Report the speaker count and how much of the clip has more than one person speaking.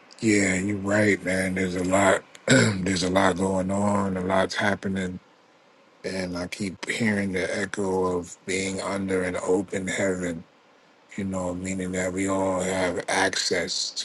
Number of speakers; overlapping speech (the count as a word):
one, no overlap